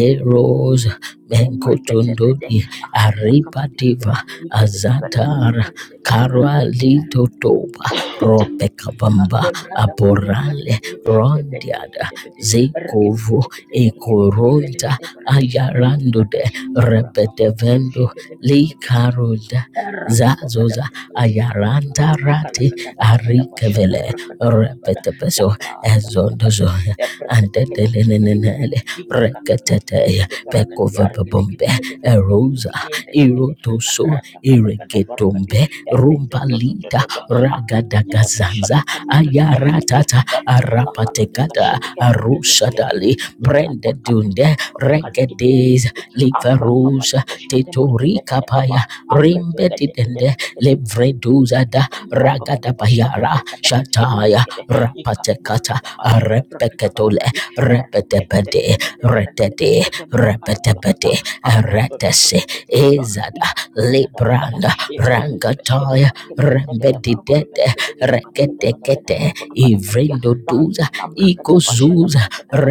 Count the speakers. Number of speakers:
two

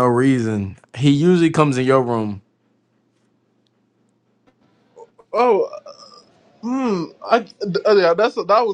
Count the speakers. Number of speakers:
two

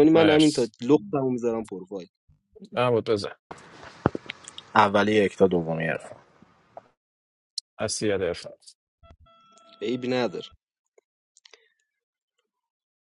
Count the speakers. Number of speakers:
three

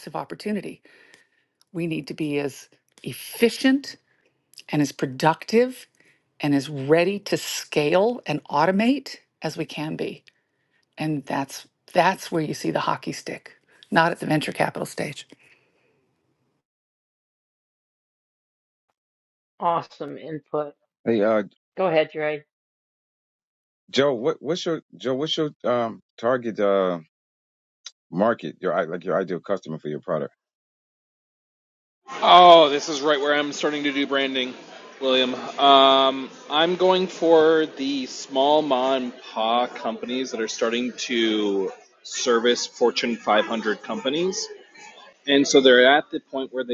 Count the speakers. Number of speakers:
four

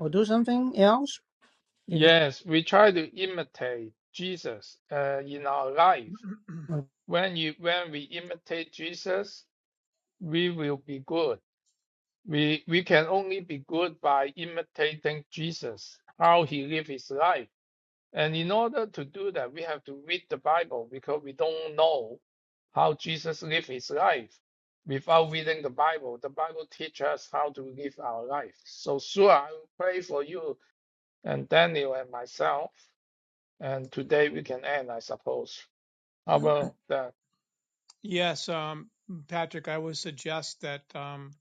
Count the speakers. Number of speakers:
three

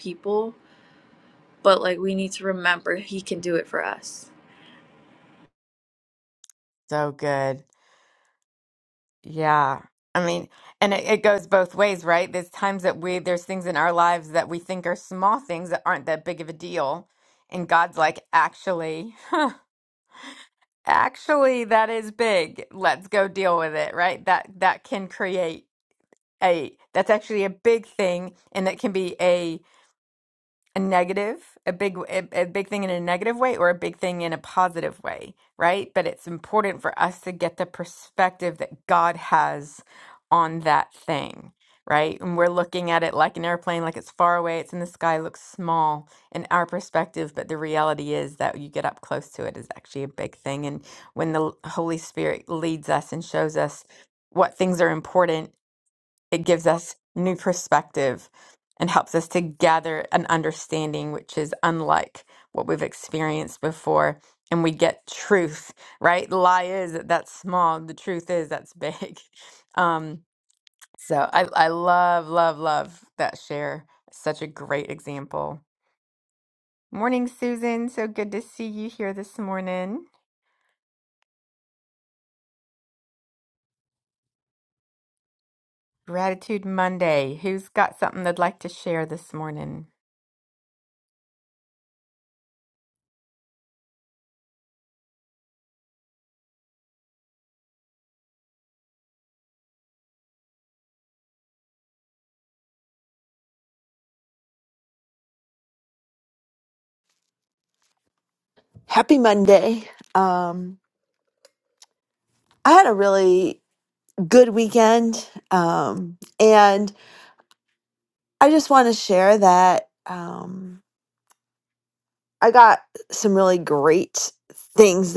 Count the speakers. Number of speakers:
three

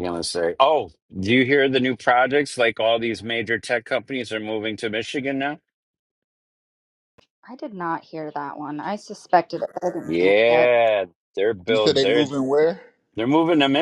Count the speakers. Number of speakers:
three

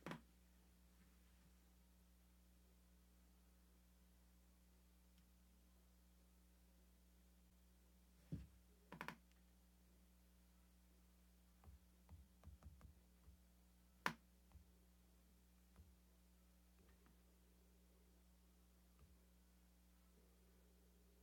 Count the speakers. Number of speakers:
zero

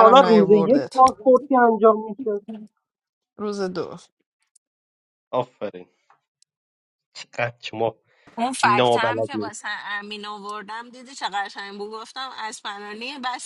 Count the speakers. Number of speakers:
three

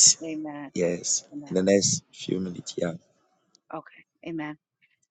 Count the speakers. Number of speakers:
two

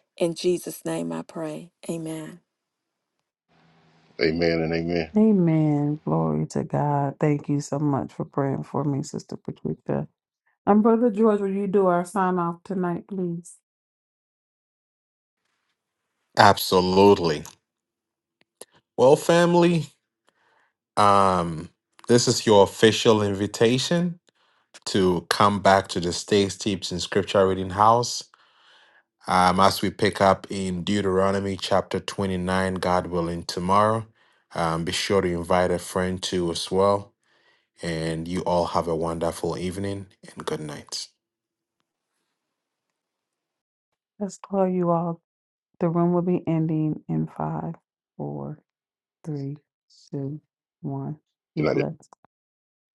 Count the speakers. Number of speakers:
four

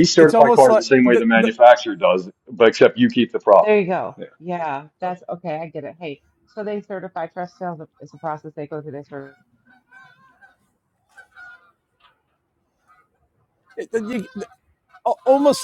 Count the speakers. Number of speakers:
three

